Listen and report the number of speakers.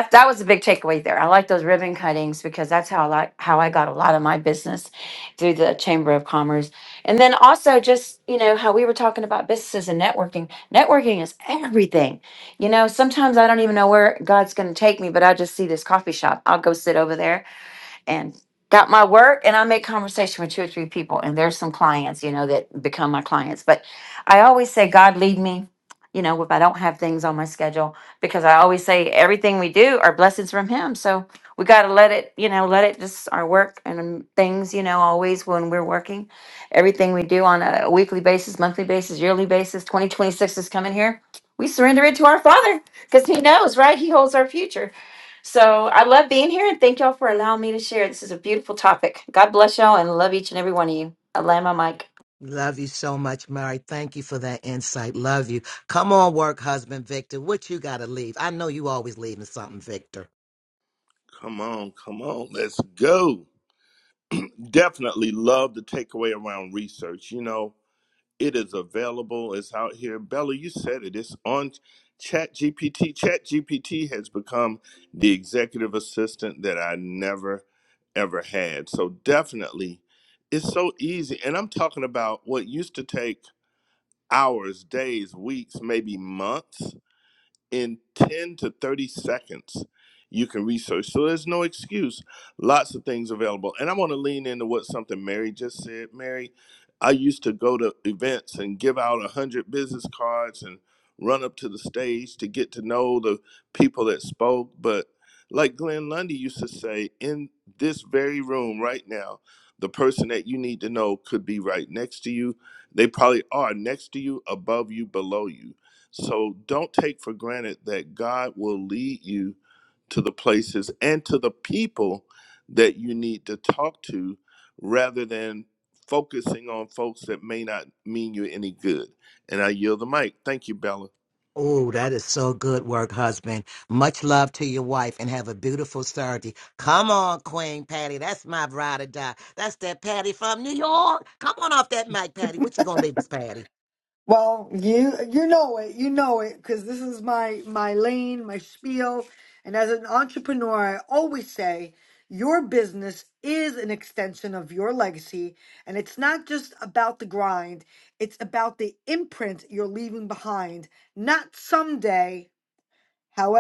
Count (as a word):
four